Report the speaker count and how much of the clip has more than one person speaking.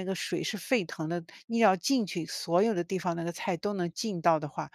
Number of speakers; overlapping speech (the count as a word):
one, no overlap